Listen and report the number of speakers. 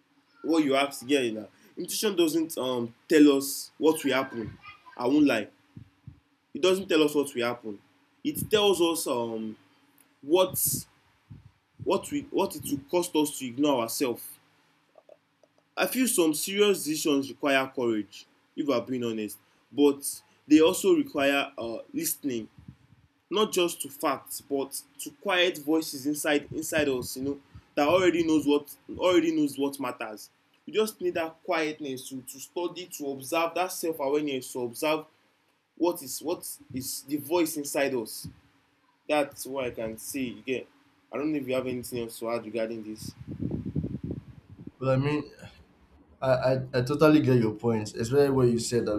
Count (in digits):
2